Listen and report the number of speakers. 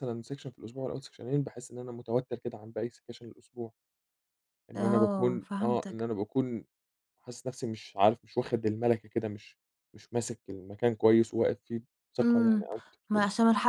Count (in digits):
2